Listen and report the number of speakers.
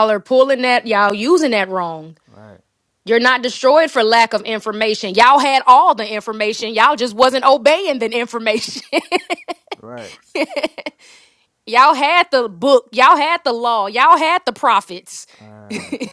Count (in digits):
2